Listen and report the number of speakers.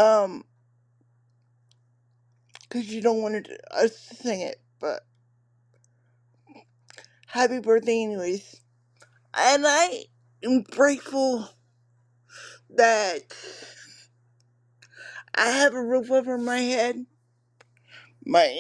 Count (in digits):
1